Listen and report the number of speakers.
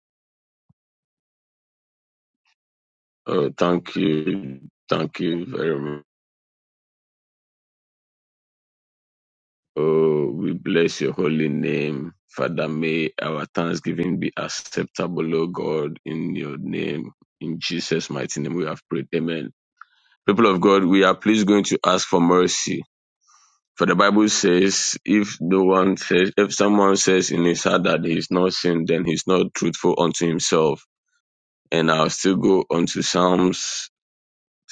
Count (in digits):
1